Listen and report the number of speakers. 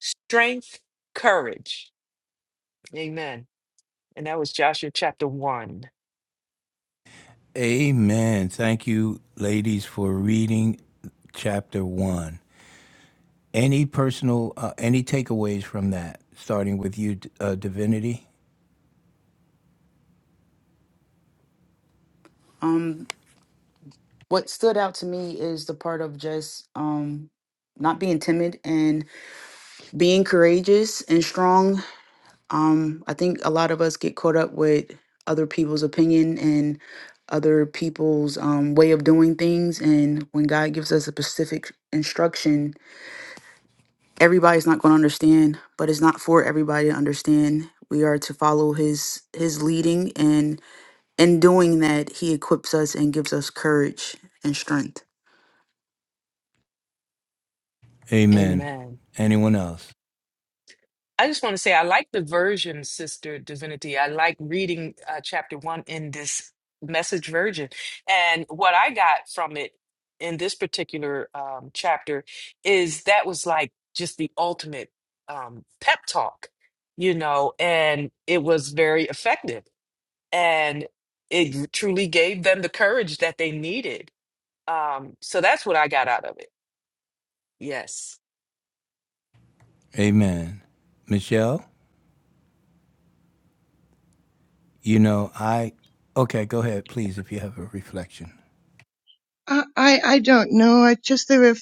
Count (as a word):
four